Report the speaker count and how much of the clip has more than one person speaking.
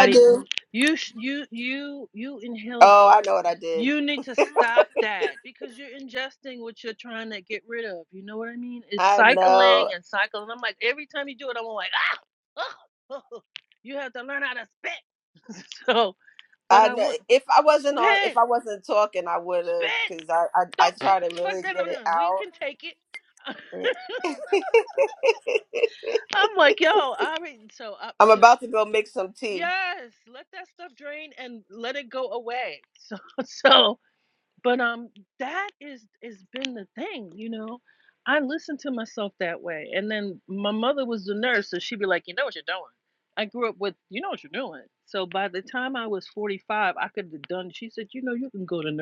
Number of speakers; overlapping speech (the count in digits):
2, about 8%